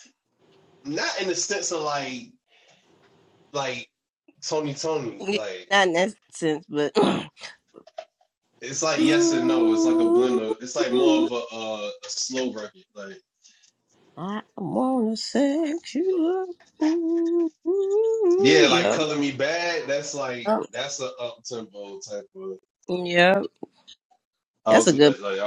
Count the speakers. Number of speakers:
two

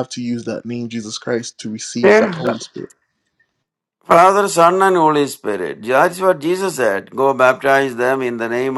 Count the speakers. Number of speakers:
two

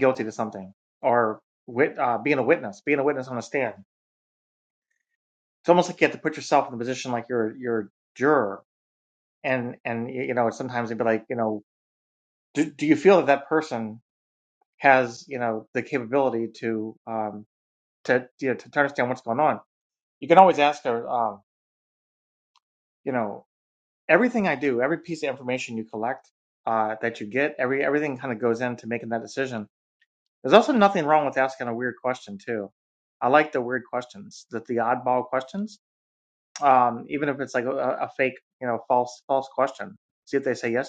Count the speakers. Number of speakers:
one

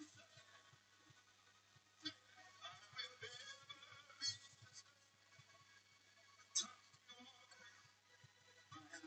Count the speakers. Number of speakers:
zero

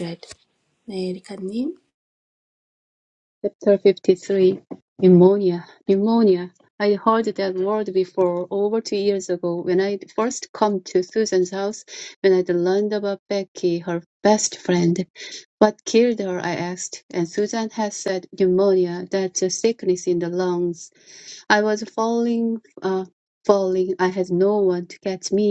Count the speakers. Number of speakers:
two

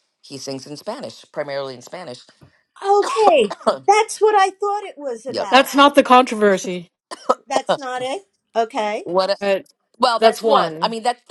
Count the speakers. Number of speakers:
three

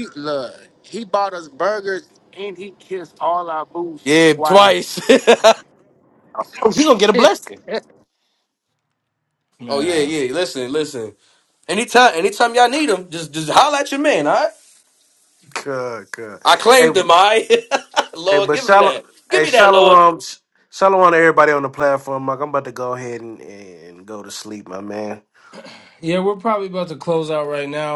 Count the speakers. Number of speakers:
four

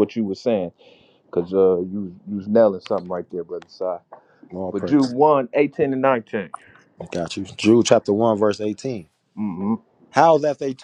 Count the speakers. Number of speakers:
two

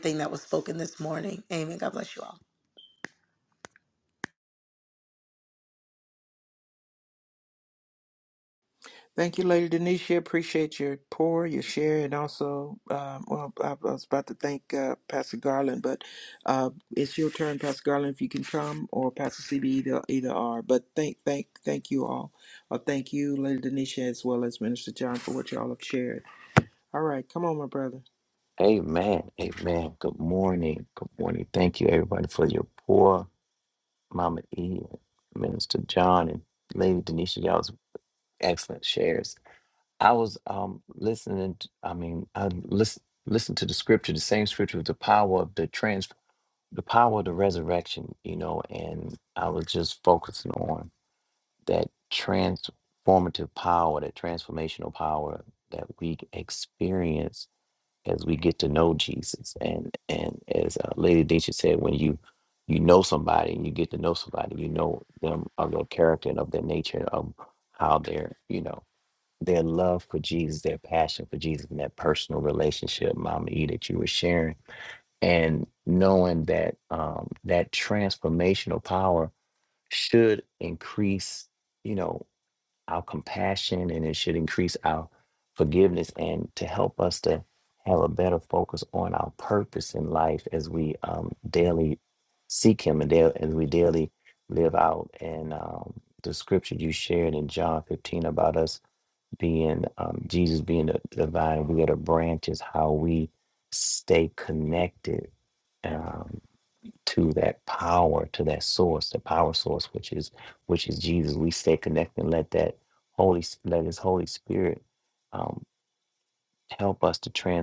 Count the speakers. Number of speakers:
three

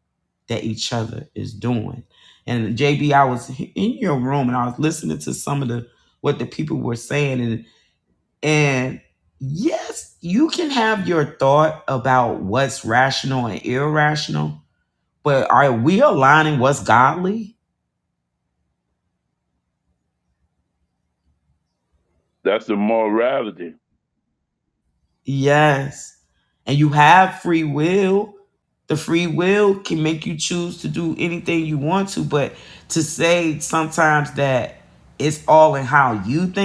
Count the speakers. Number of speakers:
two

